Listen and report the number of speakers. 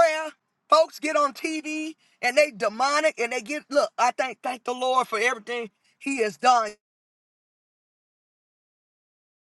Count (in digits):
1